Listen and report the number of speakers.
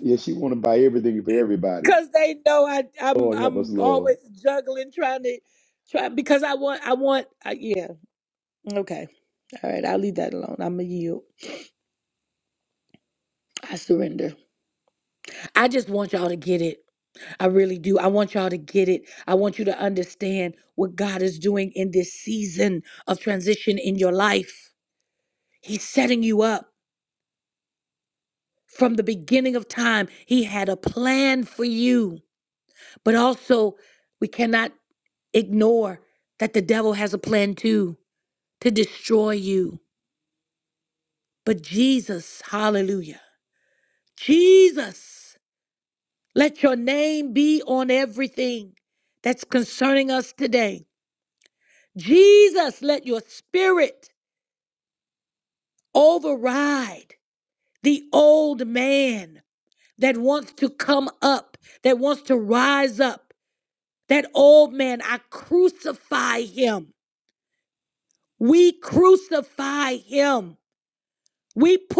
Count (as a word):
two